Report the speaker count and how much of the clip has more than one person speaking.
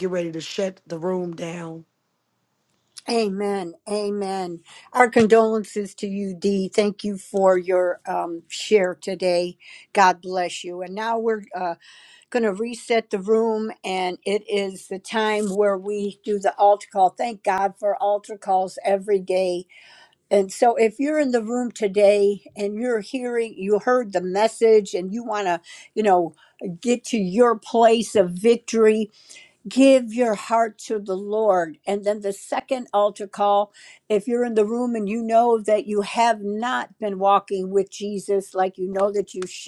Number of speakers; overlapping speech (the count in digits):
2, no overlap